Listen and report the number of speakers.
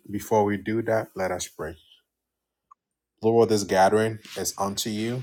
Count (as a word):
one